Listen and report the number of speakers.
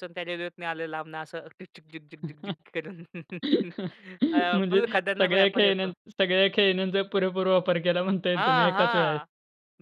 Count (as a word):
two